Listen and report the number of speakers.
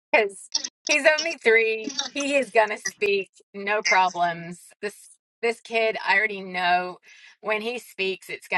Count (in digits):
1